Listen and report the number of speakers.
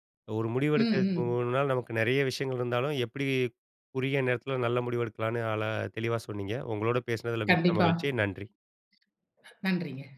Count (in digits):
2